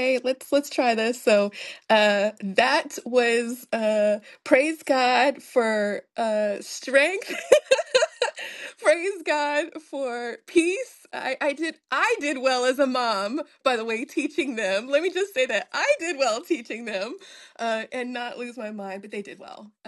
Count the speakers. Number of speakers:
1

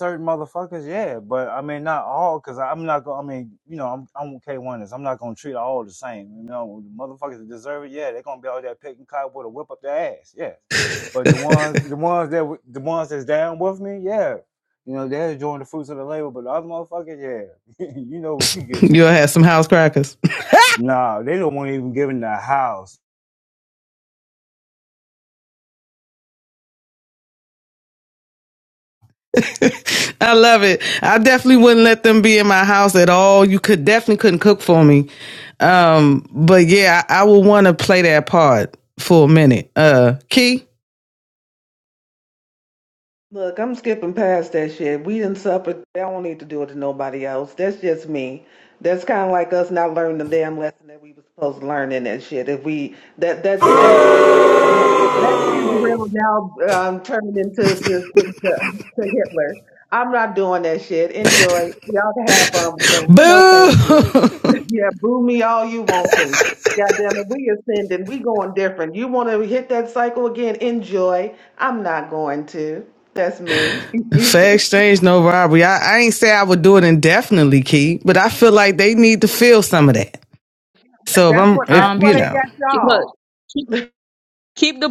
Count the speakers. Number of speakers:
4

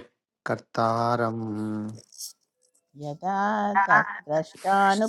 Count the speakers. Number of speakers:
2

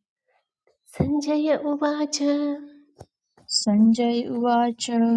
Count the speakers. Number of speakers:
2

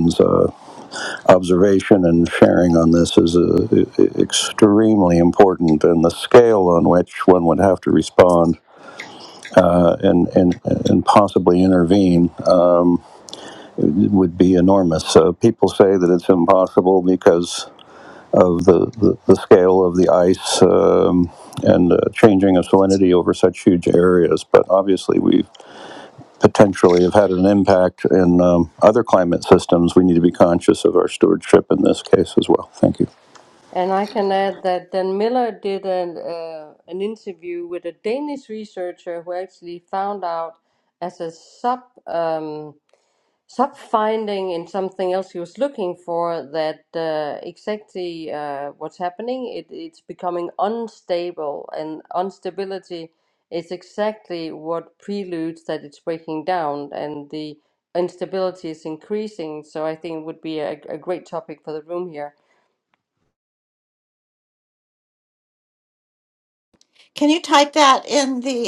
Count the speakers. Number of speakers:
3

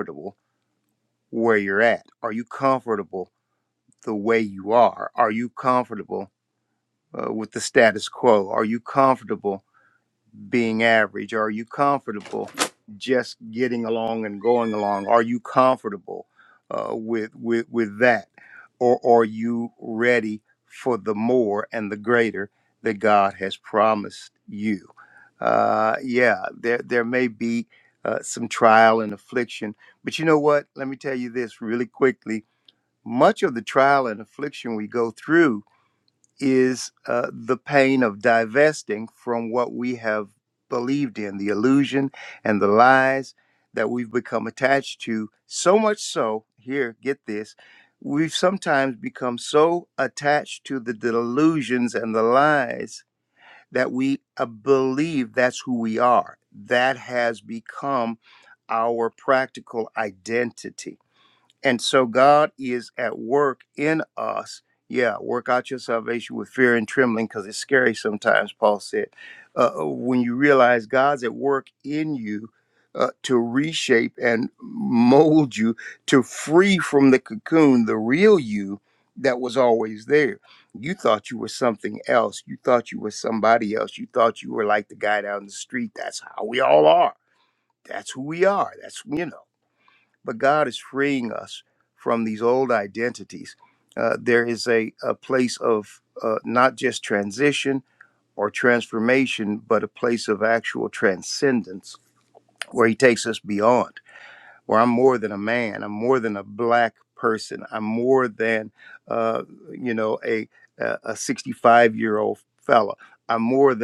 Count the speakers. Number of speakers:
1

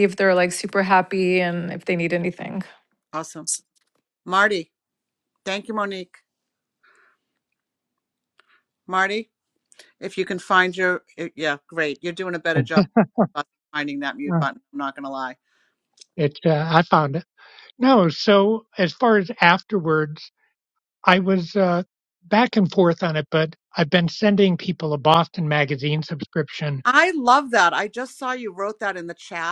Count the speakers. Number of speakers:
3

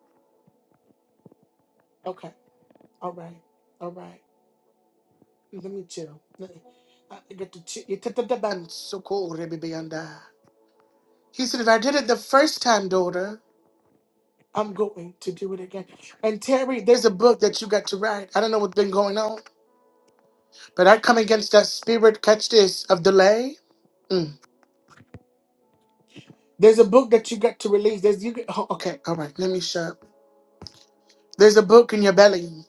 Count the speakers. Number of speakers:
1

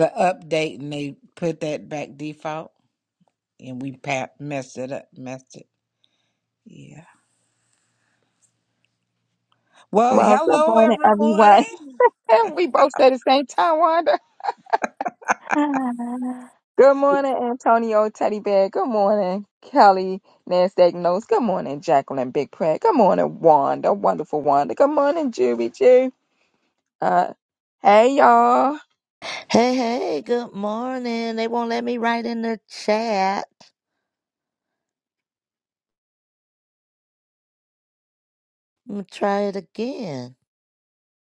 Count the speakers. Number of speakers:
3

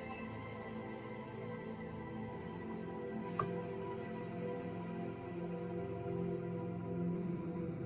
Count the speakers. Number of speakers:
0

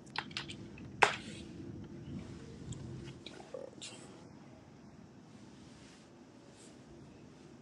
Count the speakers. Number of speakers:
0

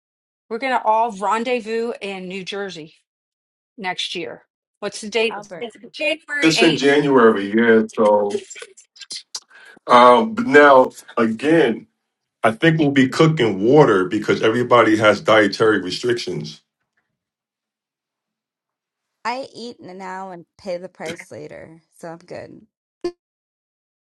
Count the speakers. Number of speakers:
3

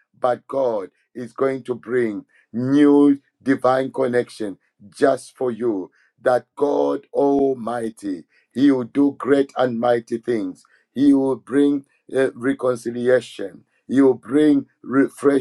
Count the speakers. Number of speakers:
1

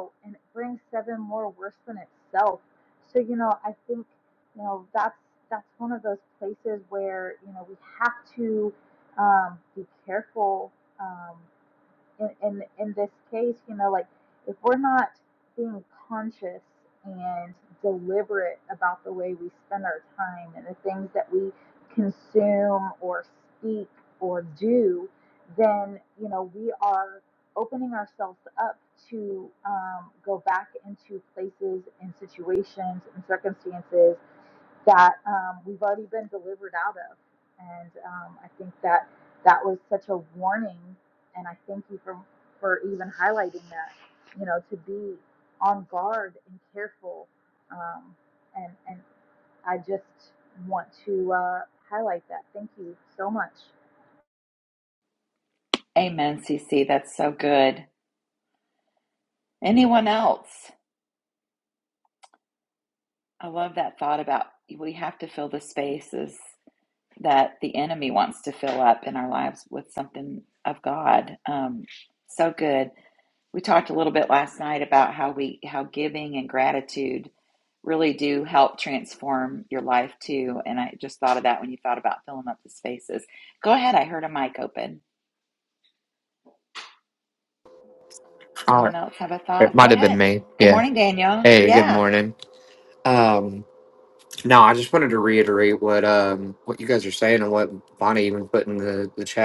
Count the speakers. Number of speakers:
3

